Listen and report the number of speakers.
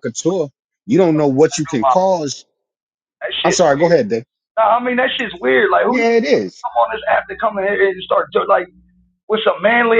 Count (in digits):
2